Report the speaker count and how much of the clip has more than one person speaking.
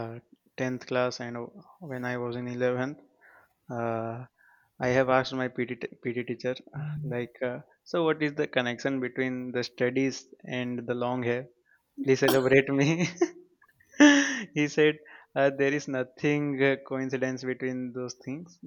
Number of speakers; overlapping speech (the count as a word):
one, no overlap